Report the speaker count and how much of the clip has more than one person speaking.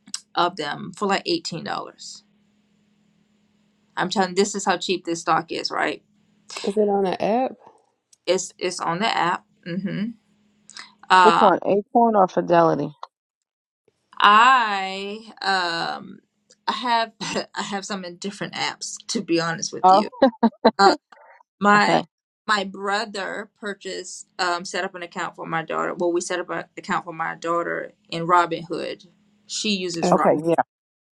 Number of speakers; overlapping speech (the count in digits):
3, about 4%